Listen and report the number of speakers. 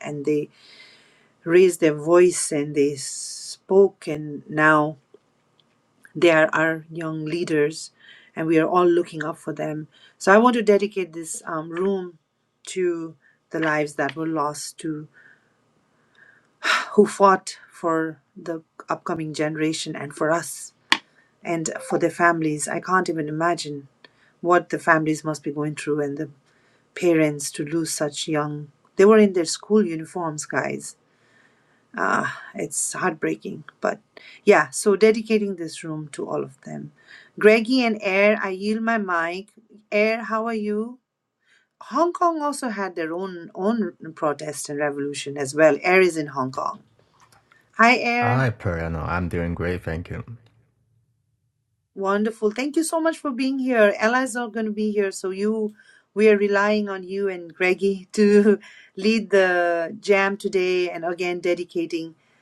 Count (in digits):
2